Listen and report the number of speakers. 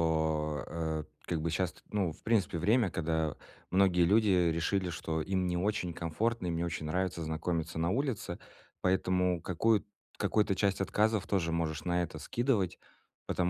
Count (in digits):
1